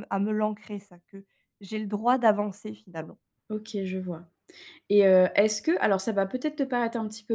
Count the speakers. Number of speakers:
two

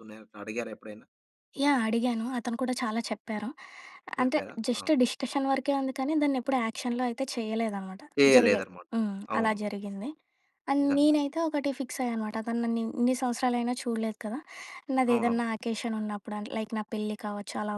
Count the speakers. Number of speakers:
two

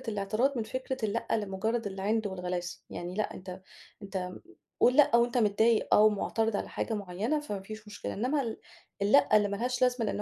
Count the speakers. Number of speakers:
one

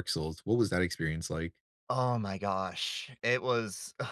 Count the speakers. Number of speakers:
two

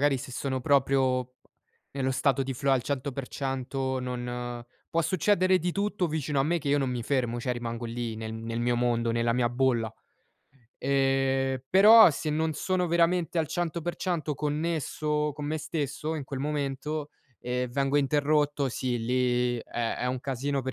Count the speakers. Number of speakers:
one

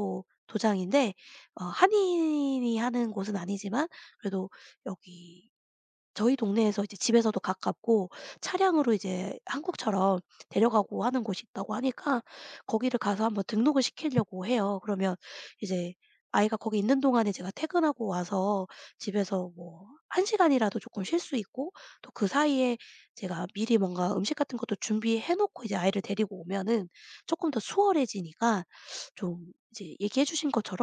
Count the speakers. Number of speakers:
one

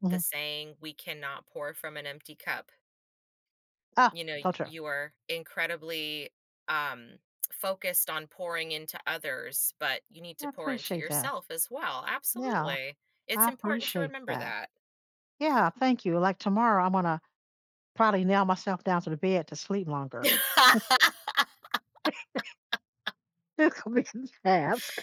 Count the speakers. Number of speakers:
two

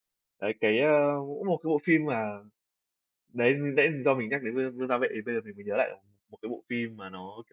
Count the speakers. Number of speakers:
one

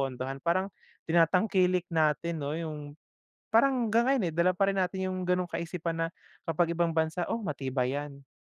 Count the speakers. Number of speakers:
one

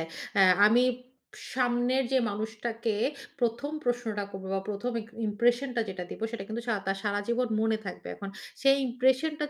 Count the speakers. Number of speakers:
one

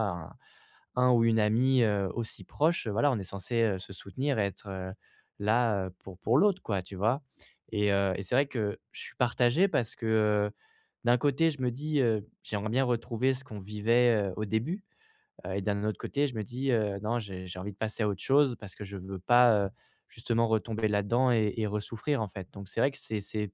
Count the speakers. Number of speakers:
one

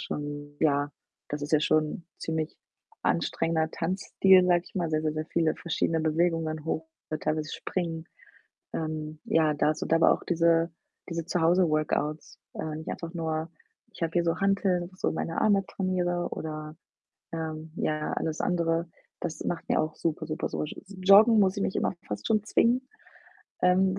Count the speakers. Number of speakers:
one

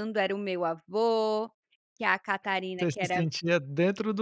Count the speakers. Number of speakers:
two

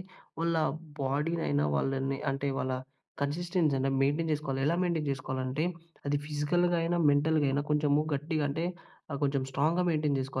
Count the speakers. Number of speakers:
one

